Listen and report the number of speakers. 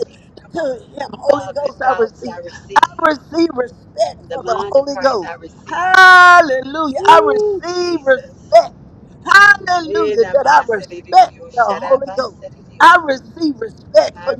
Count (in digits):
2